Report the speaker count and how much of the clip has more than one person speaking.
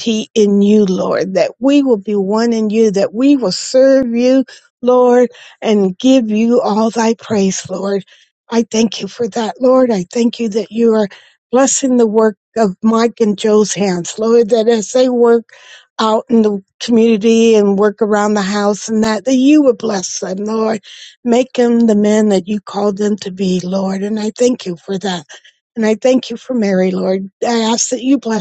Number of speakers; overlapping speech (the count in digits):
1, no overlap